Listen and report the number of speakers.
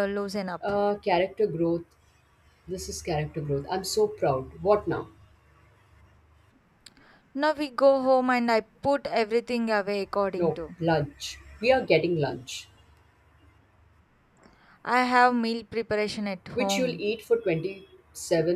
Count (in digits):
2